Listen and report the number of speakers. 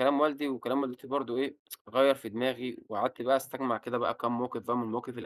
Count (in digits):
1